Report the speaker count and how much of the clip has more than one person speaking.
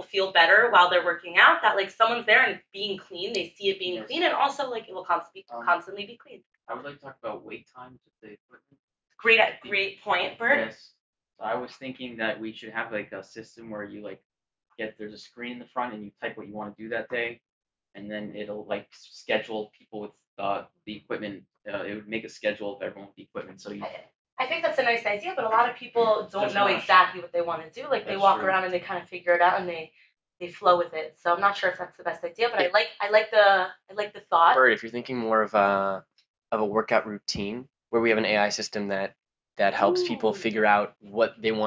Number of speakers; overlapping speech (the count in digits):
3, about 8%